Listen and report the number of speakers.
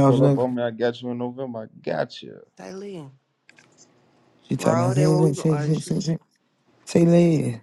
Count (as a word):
three